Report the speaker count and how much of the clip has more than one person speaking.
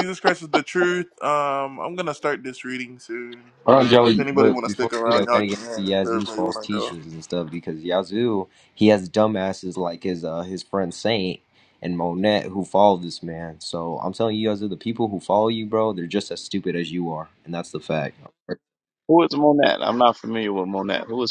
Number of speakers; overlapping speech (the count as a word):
three, about 15%